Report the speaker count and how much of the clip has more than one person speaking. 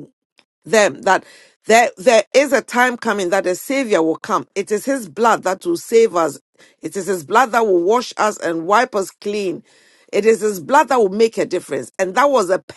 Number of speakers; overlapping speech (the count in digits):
1, no overlap